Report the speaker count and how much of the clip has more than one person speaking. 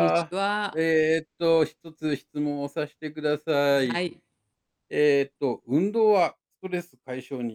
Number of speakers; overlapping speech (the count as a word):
two, about 7%